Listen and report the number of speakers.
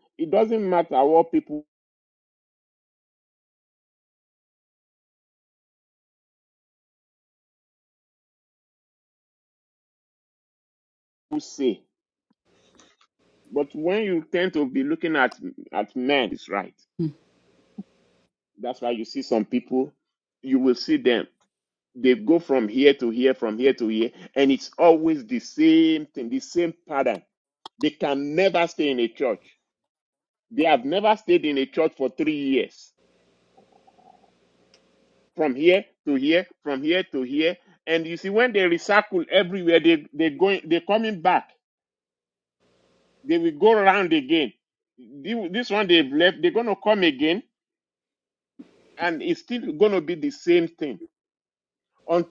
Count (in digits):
1